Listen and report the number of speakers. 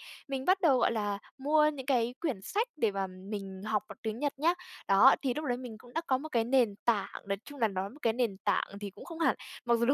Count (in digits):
1